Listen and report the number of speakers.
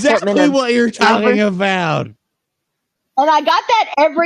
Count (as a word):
two